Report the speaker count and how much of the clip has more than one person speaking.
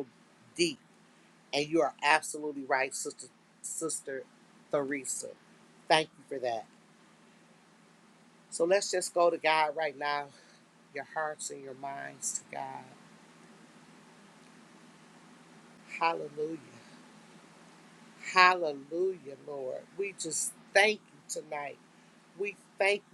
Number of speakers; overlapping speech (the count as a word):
one, no overlap